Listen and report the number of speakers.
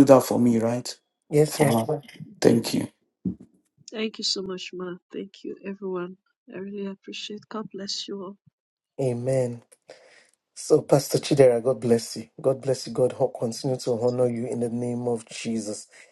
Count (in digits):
3